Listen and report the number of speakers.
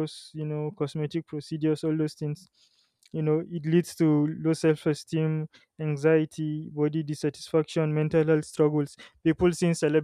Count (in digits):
1